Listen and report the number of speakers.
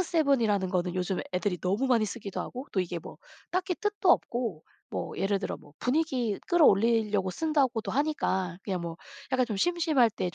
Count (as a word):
one